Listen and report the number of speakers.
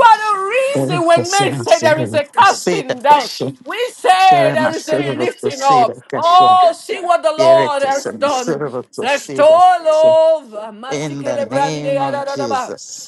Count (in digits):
2